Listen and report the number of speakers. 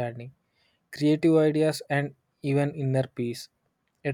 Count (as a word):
one